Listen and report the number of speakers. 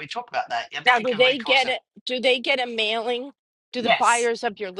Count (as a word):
two